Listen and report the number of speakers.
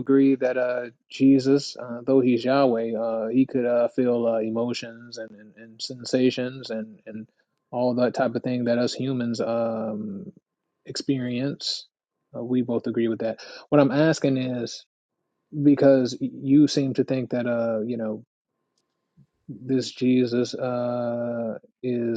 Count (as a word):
one